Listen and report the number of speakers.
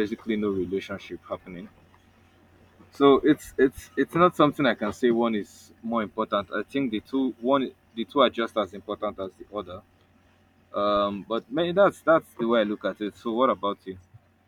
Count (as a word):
one